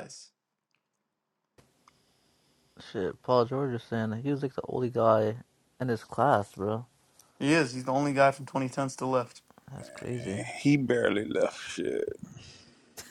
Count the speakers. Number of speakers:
three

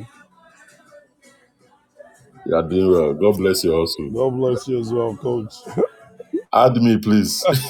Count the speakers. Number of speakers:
two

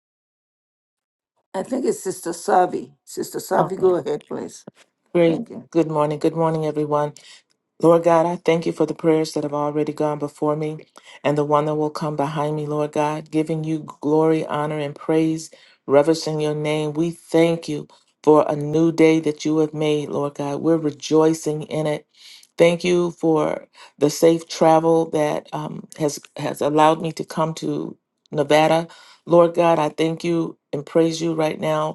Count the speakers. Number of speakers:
two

